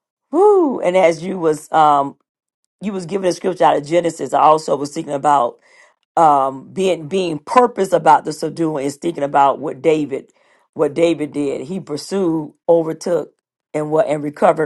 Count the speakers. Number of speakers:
1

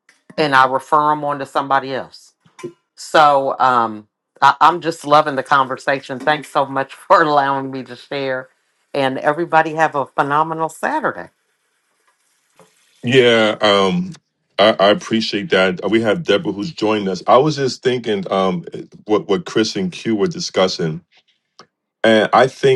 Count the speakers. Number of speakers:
2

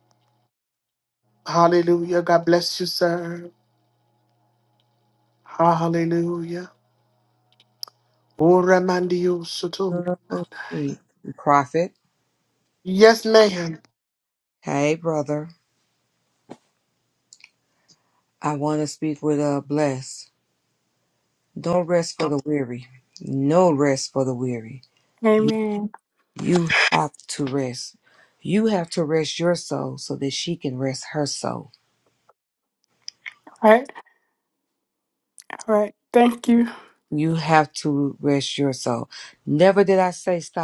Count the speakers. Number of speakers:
3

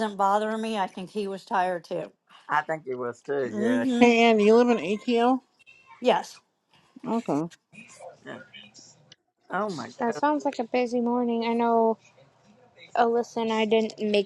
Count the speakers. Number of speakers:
4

